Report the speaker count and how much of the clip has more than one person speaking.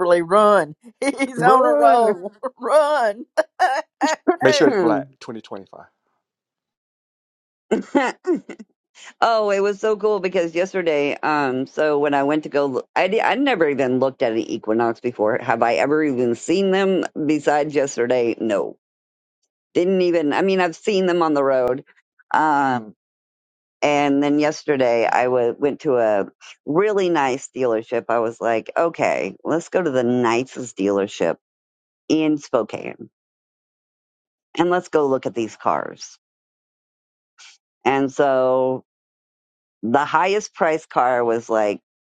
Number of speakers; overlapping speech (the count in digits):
3, about 3%